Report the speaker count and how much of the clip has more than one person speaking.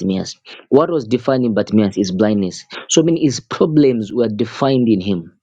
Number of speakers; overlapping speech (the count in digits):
1, no overlap